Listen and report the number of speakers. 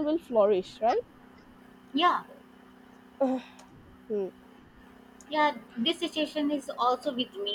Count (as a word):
two